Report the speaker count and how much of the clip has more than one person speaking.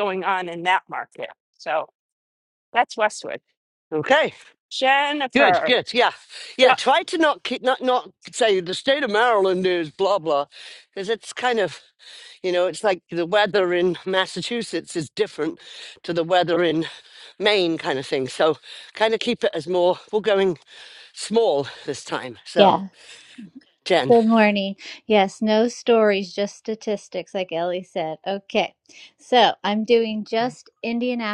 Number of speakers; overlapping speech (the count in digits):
3, about 2%